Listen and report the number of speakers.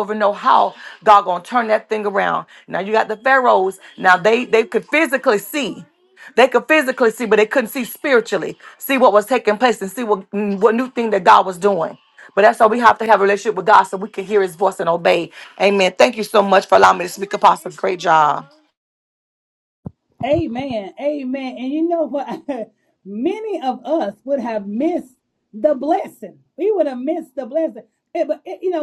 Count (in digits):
2